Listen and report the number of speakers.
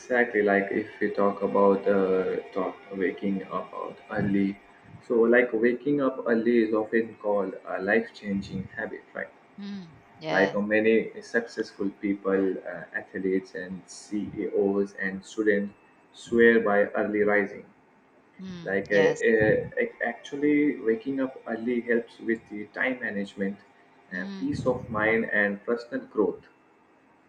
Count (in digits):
2